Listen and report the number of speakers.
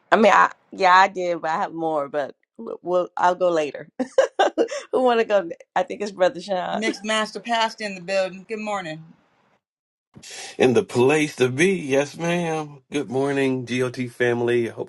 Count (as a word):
three